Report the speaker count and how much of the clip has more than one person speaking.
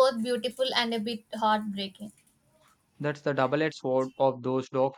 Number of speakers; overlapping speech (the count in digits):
2, no overlap